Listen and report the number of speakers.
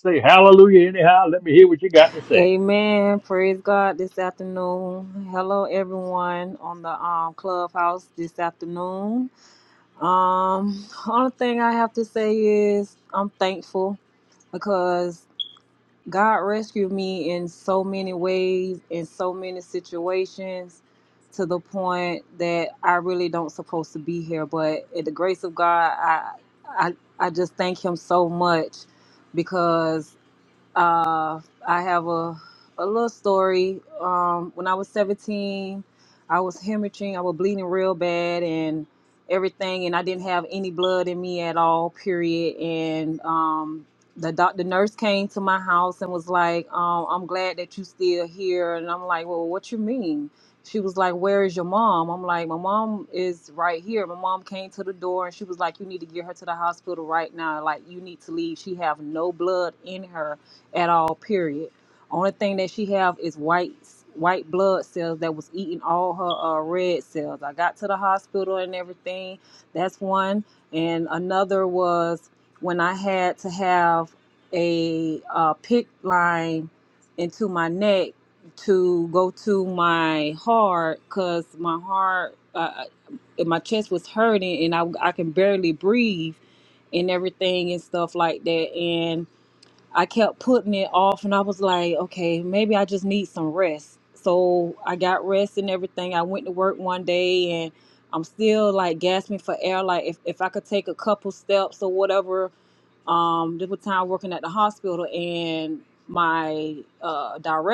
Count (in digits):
2